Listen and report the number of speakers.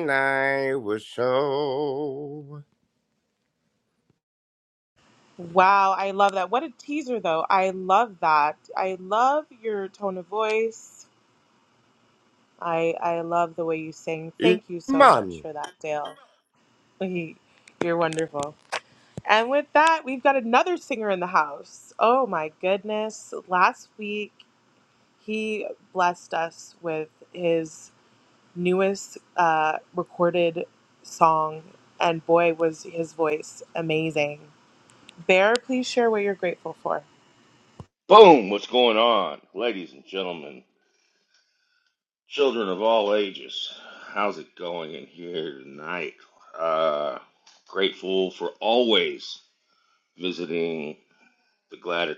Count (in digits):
3